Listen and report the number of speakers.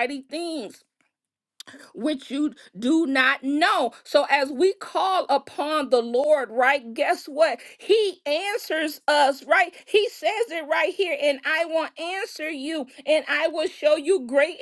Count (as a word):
one